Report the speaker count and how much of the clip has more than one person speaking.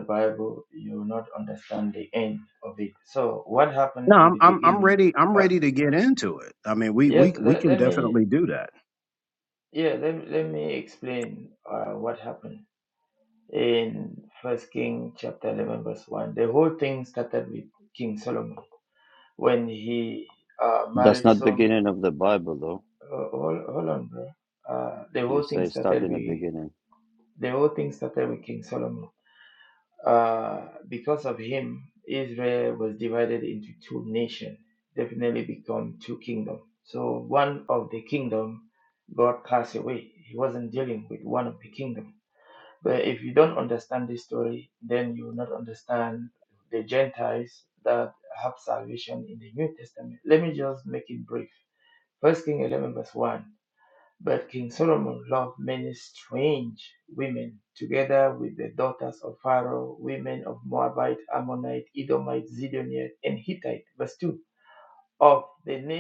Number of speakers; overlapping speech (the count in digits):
3, about 6%